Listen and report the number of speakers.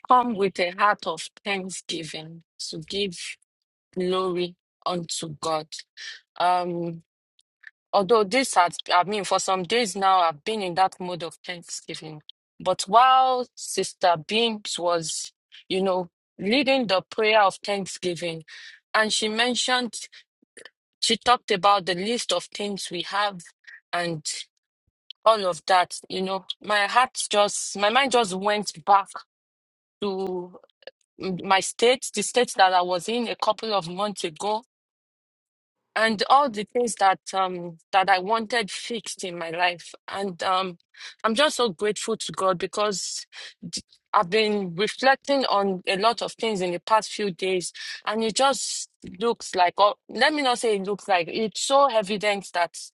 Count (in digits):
1